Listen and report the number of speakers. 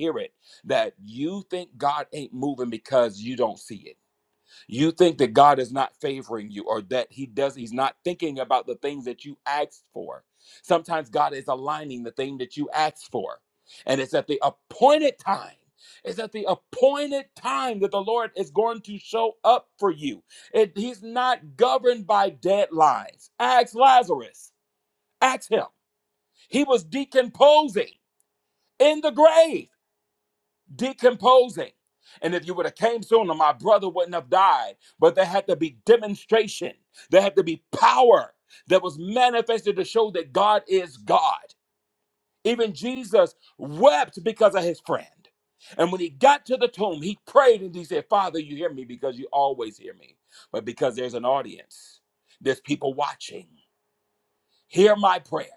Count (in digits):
1